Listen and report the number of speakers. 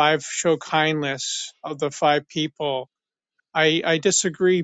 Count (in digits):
1